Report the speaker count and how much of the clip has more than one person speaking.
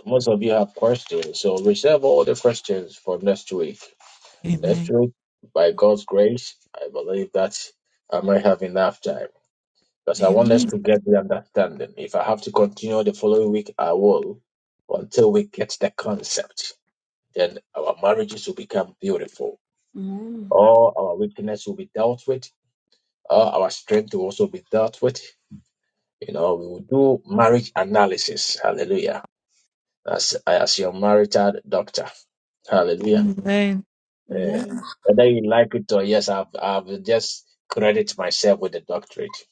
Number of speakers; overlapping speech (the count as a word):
three, about 3%